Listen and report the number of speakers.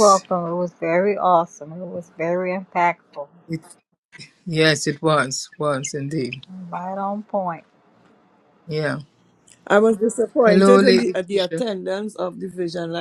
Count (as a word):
three